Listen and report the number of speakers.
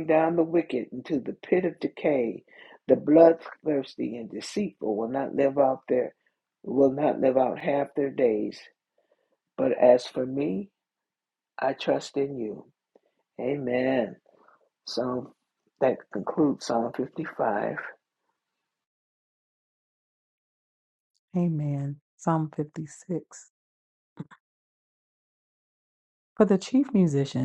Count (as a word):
two